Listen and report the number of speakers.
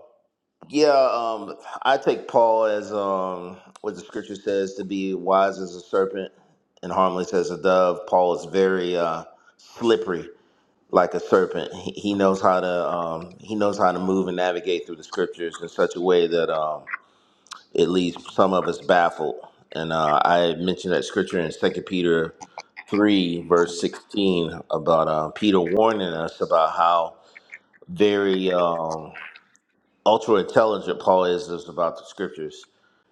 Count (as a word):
one